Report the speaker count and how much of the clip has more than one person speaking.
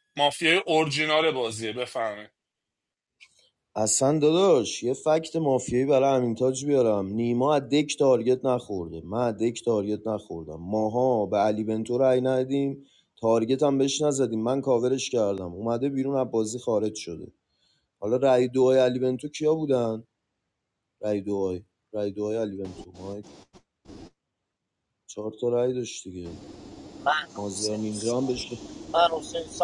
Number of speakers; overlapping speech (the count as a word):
three, about 4%